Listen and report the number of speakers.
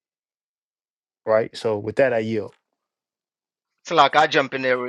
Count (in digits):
2